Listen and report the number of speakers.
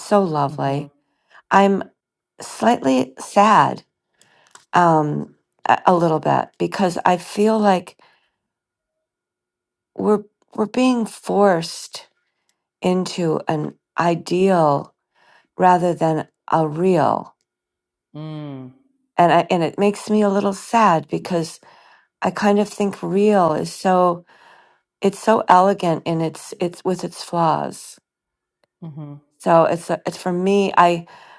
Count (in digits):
2